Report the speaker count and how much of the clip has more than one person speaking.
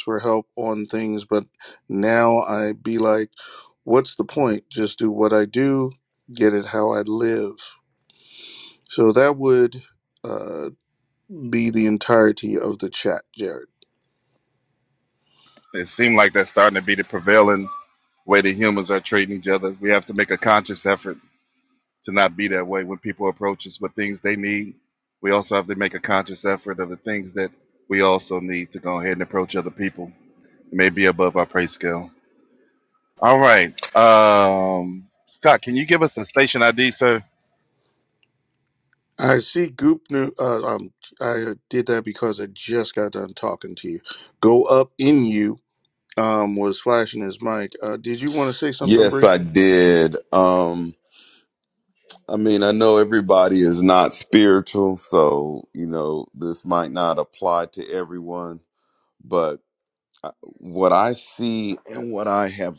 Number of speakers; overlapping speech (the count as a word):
three, about 1%